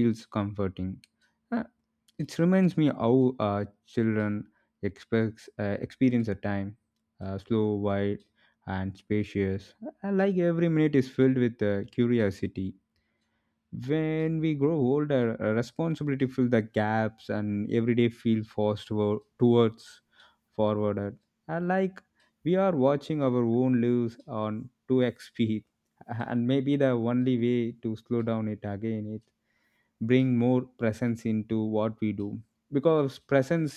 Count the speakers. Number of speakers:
one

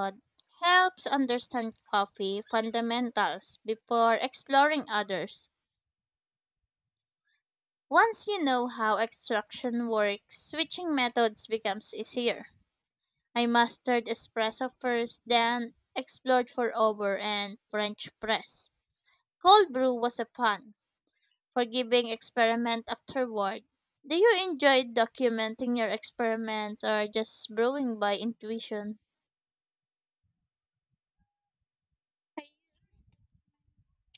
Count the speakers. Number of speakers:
one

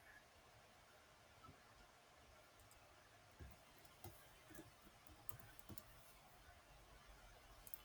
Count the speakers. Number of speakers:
zero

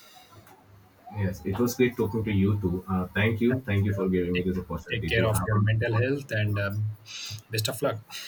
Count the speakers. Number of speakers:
two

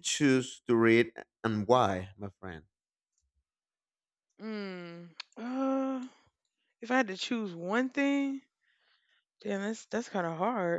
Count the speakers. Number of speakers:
two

